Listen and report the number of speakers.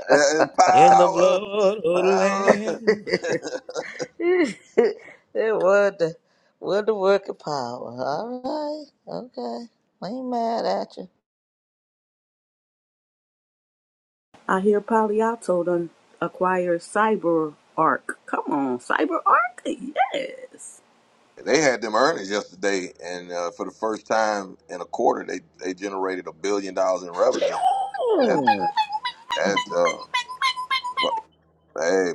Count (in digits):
4